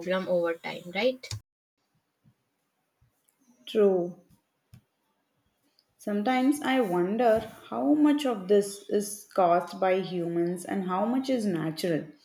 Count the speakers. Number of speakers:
2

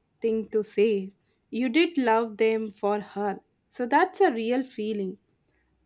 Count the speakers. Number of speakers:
1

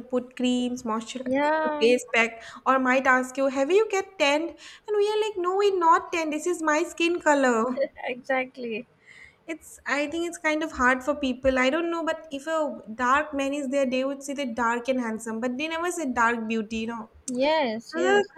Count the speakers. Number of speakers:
2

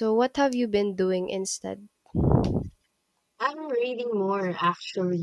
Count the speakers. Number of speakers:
2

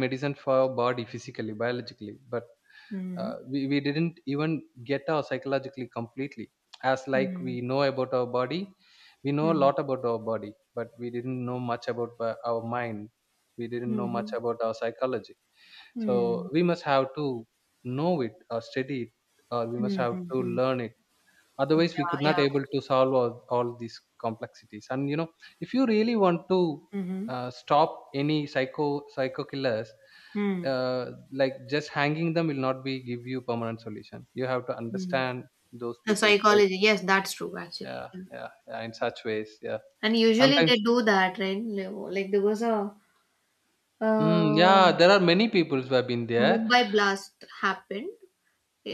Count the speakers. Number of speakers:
2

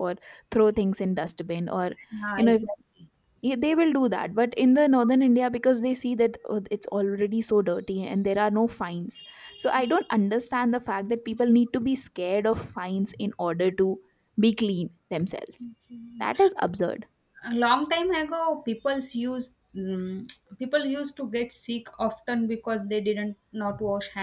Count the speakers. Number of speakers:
2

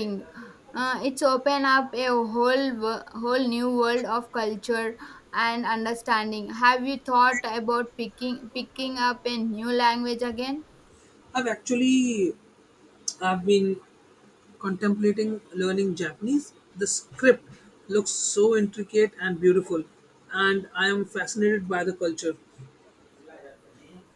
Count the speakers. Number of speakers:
2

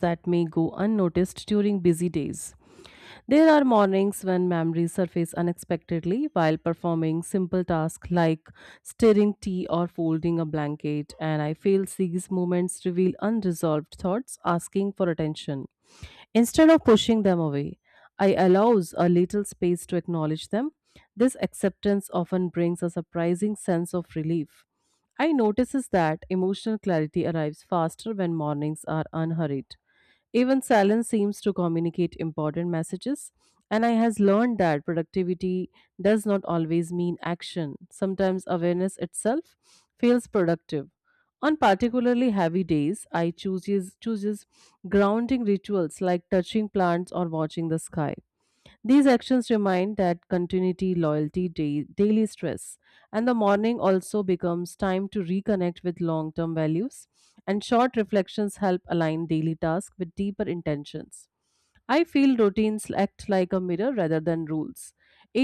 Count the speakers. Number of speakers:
1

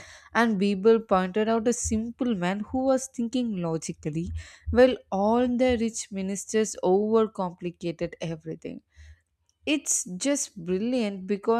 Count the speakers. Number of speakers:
1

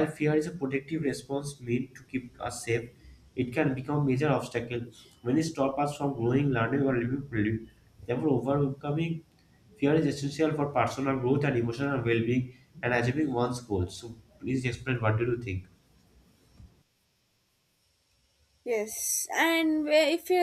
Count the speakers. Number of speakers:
2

